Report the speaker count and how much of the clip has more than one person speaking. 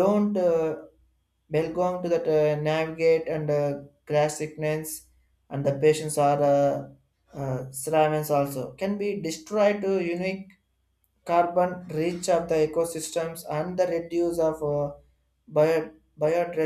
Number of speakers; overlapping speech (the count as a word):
one, no overlap